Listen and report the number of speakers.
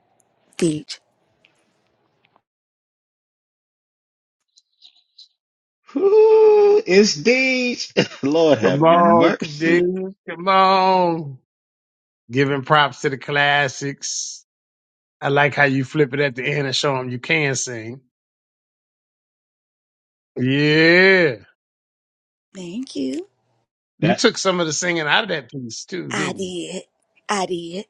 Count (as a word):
three